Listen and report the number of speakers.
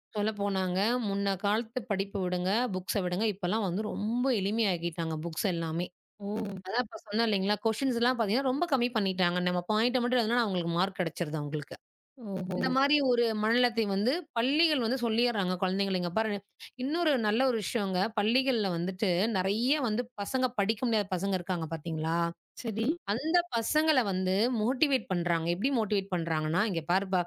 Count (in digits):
2